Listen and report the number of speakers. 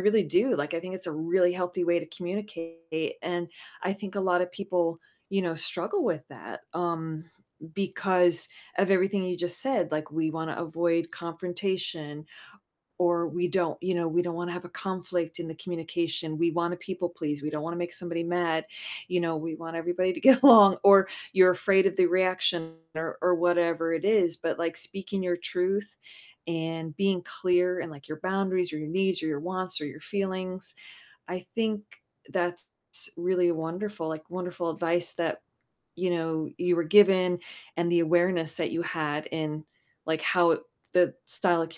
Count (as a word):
one